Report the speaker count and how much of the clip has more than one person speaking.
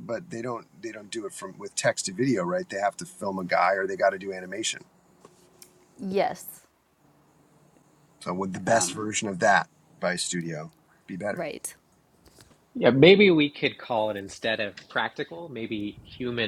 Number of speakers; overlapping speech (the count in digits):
3, about 3%